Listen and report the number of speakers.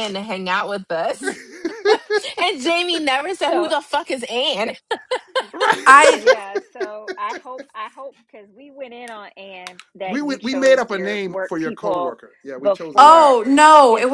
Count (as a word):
four